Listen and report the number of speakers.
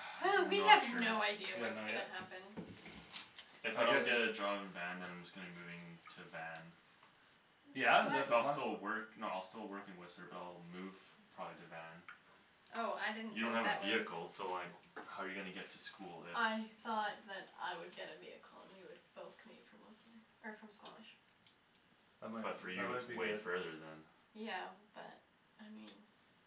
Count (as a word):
three